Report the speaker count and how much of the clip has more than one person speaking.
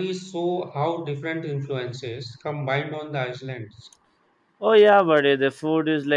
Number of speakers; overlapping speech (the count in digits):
2, no overlap